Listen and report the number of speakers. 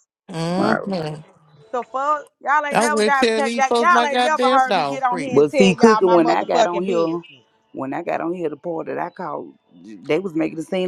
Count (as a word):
three